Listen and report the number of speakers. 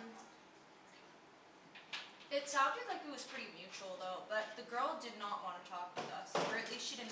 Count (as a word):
one